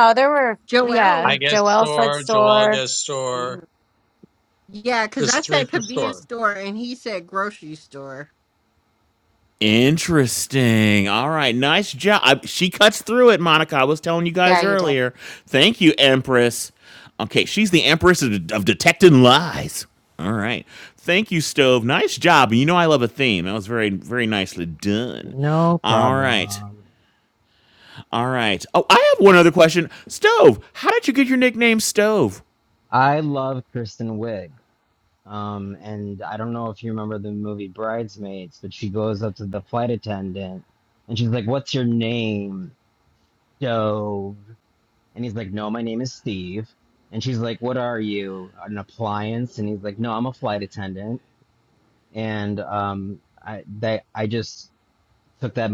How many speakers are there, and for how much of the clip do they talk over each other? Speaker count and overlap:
five, about 7%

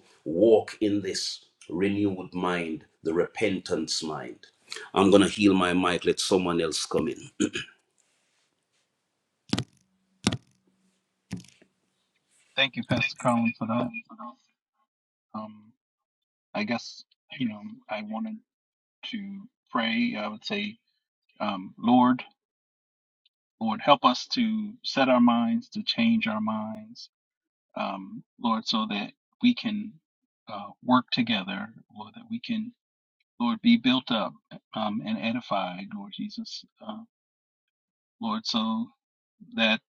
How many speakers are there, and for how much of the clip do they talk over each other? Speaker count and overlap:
two, no overlap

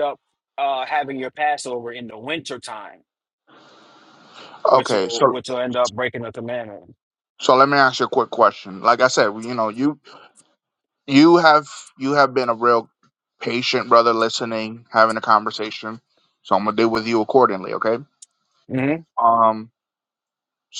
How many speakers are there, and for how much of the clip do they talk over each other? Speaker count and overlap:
two, about 3%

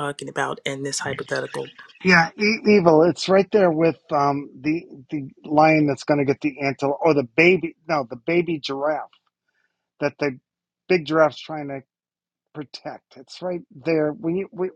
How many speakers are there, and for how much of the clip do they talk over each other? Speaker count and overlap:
two, no overlap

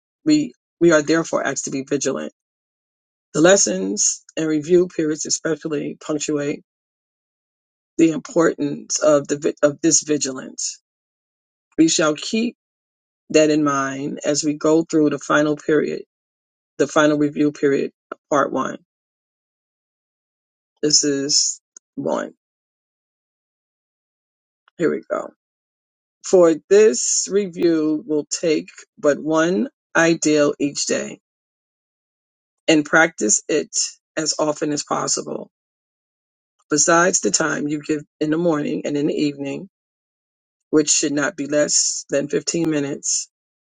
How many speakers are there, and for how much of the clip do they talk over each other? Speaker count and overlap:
one, no overlap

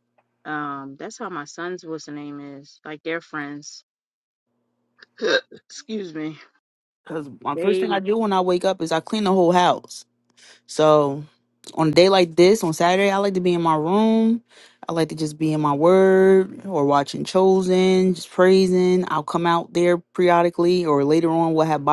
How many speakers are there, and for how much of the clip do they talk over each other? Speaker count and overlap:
two, about 2%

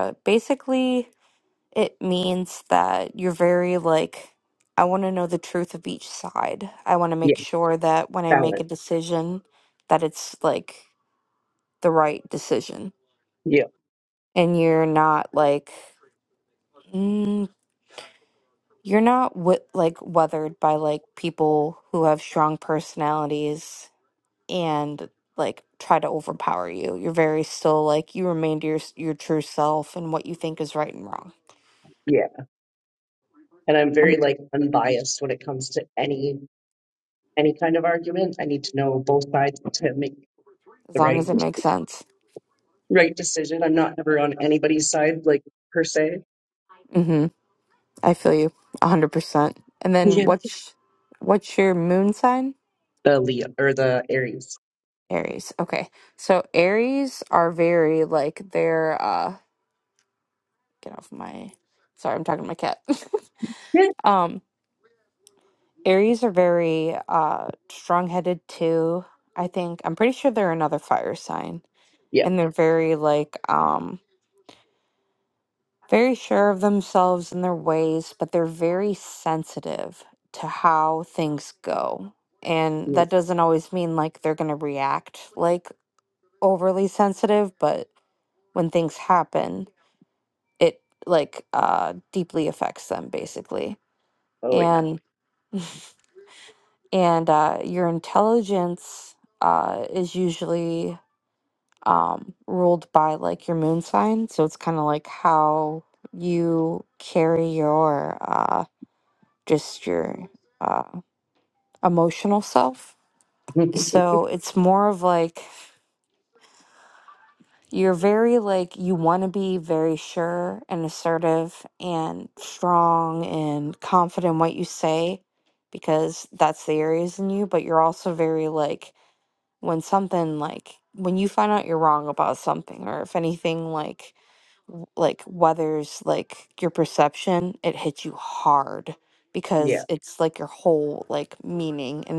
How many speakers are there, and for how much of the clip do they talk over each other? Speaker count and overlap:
two, about 1%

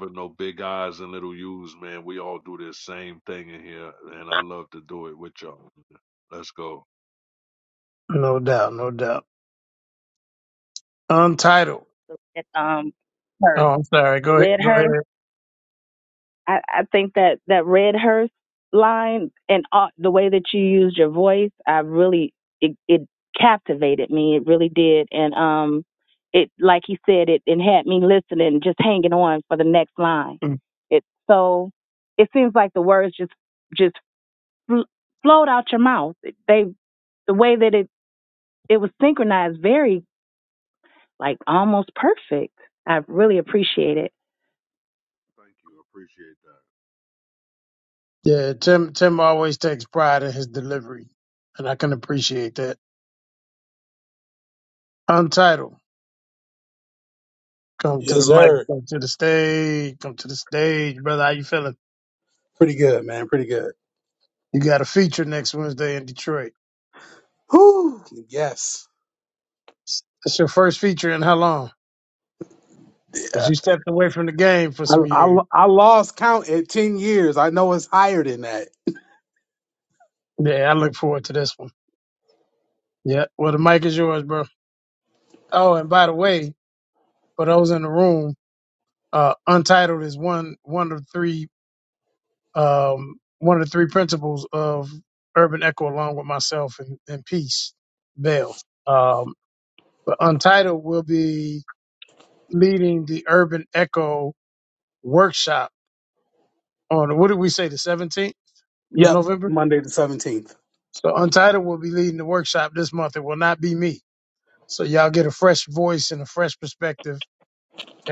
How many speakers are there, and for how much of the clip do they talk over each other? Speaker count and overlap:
four, about 2%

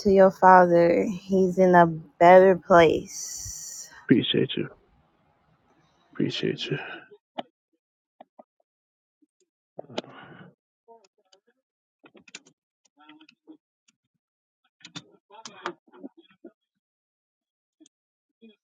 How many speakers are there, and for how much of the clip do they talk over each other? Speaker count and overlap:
two, no overlap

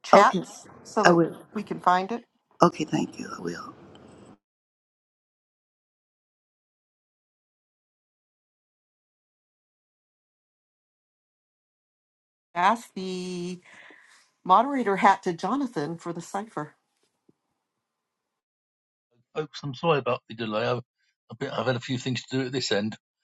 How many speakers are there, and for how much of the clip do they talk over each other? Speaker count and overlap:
three, about 1%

